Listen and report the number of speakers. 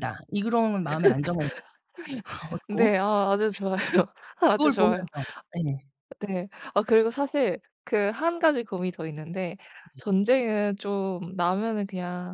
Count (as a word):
two